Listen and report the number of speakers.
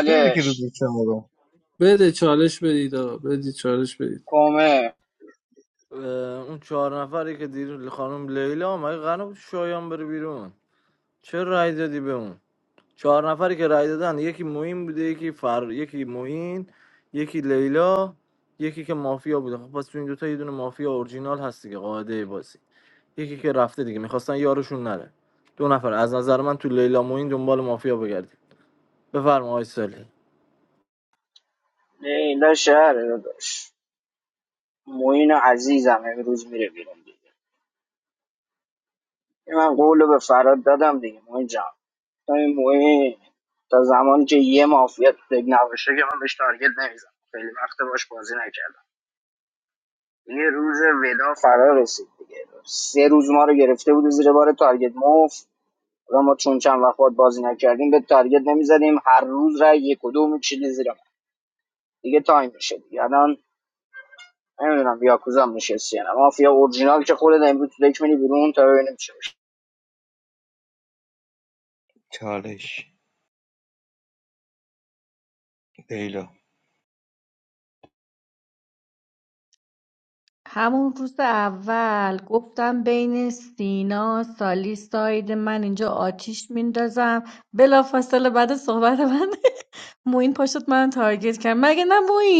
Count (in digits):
5